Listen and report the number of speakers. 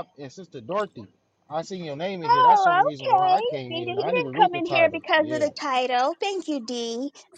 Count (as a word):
two